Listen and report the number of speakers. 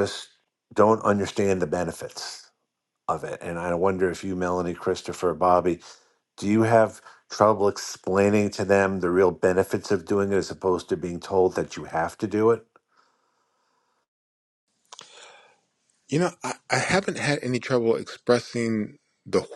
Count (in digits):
2